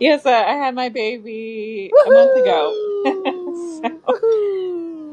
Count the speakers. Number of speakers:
2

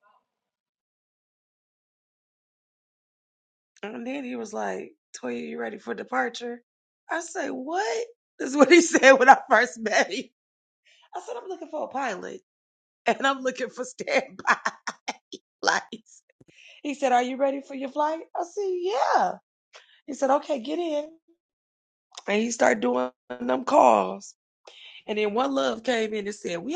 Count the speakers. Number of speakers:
1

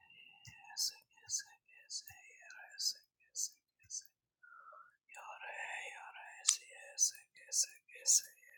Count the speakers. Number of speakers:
0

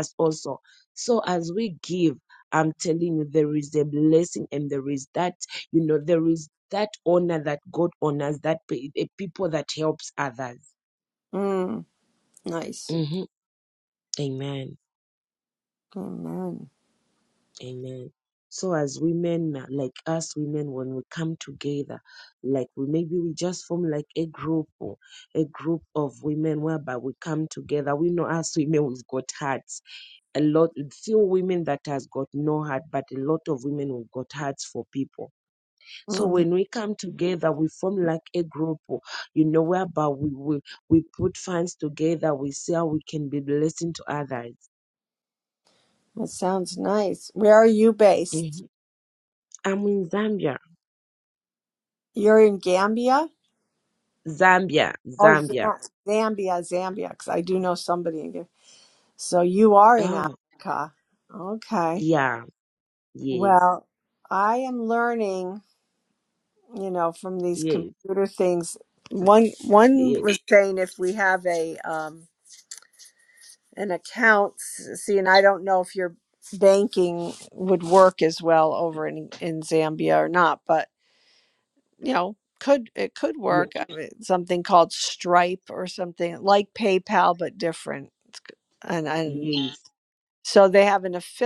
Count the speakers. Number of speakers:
2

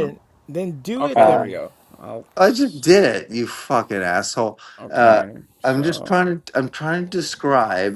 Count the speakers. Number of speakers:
3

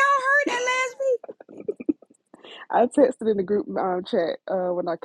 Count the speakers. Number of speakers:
2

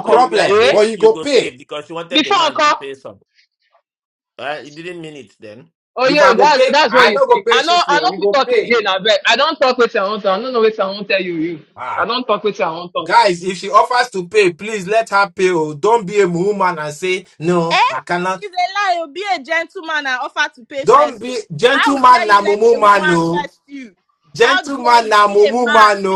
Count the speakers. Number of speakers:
4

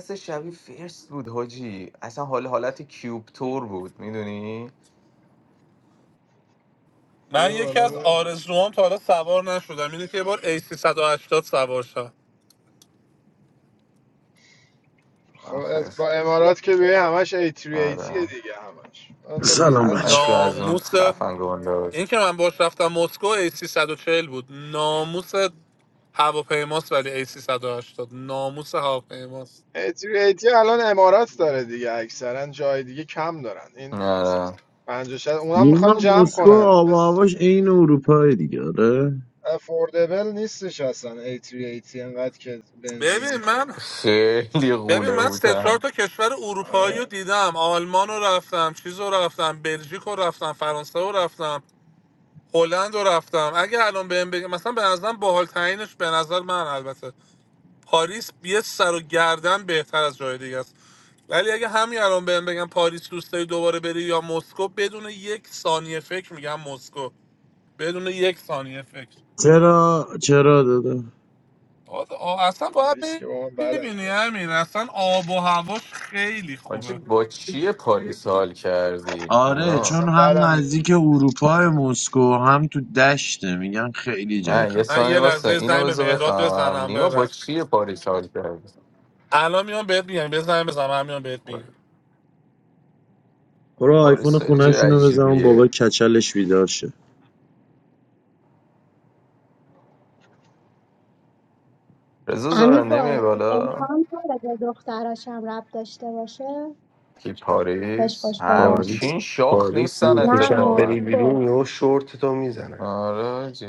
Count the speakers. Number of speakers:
6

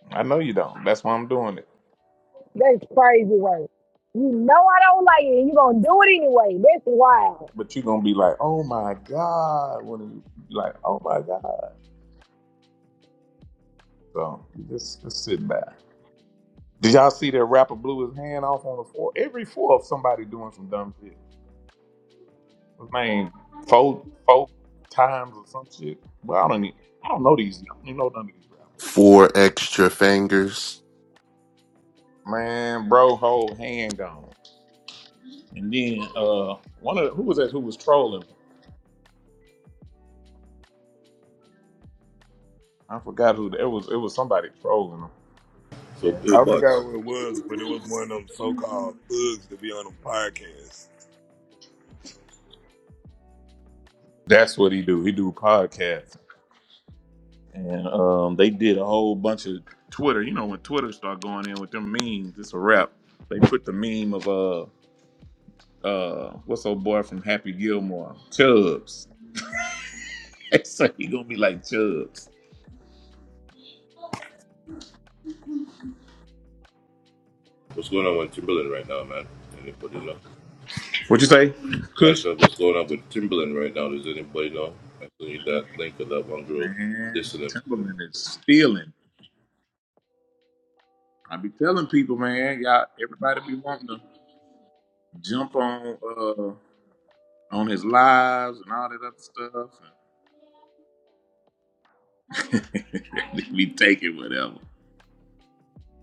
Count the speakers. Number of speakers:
5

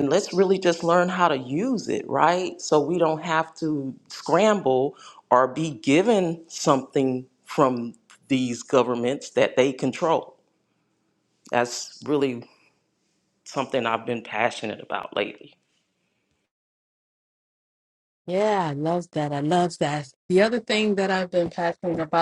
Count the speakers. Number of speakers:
2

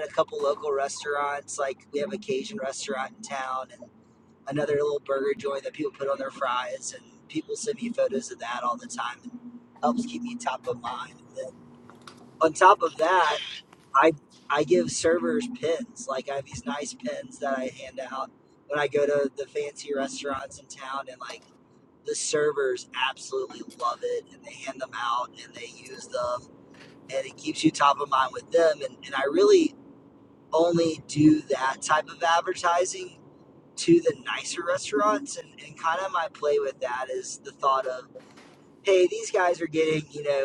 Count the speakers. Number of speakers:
1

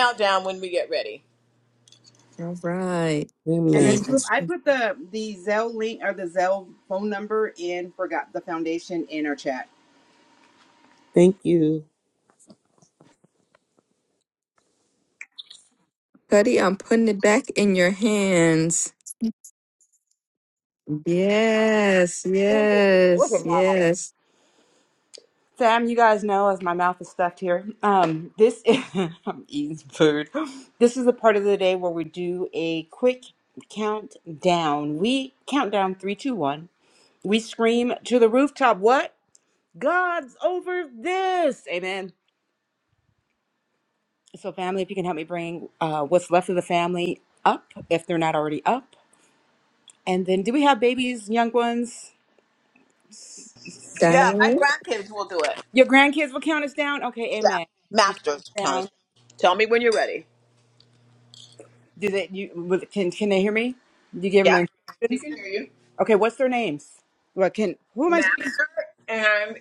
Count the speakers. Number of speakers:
4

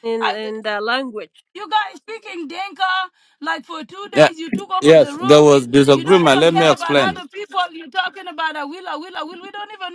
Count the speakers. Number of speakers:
3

